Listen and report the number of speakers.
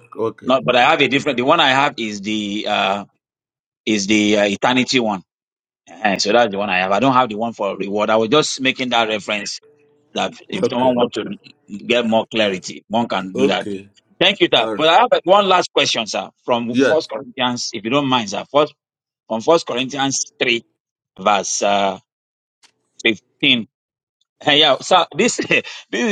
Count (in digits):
2